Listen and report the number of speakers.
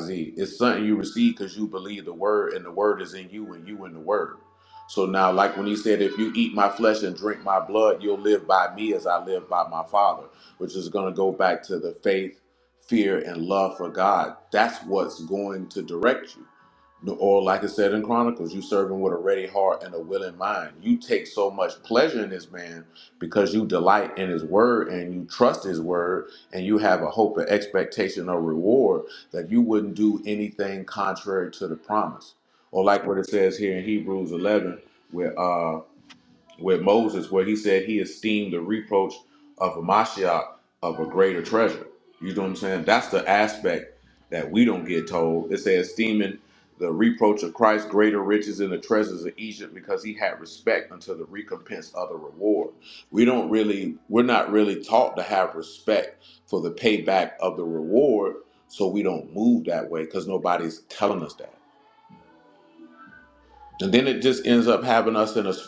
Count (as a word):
one